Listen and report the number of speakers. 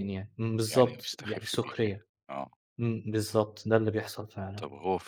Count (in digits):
2